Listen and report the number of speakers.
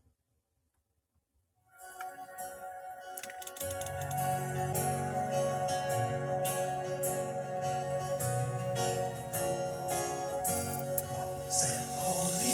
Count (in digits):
0